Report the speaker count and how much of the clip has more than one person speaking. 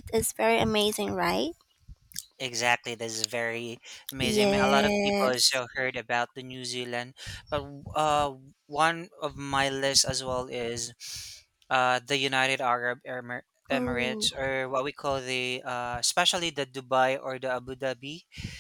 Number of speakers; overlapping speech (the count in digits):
2, about 9%